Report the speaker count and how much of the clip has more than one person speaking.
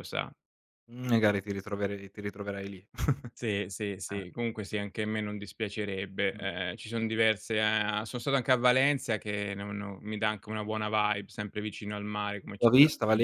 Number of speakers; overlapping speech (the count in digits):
2, about 7%